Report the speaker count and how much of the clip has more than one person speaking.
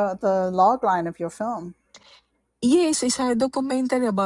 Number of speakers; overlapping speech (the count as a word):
two, no overlap